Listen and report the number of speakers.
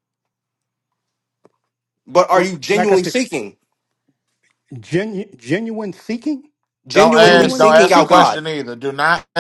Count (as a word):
three